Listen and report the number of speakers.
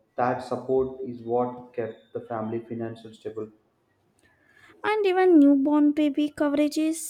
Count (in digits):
2